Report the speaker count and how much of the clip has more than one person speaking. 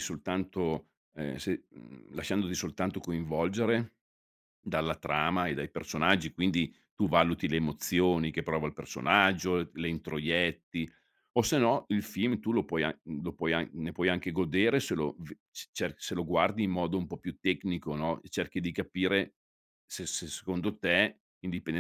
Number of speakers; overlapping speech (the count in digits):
1, no overlap